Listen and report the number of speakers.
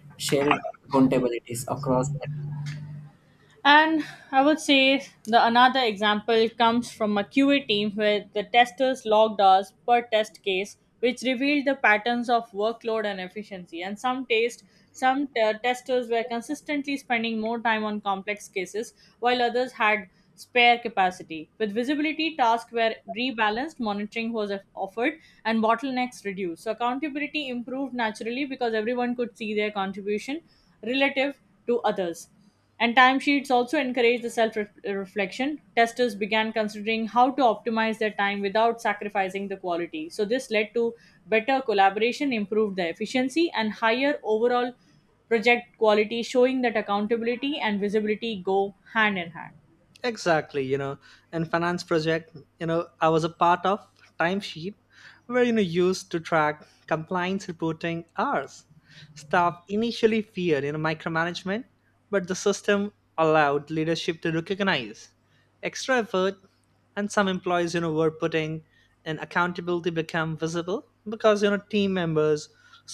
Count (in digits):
3